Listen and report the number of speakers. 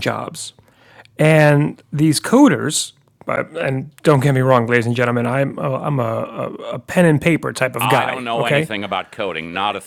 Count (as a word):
two